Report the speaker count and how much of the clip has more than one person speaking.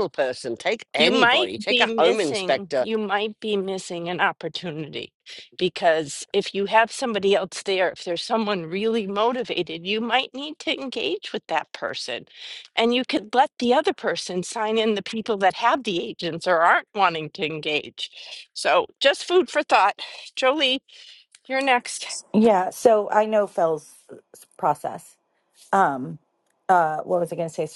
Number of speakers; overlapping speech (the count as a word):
three, about 7%